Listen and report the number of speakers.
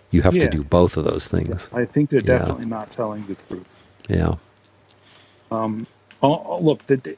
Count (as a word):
two